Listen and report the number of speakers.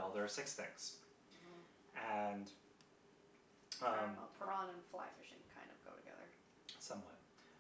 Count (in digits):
2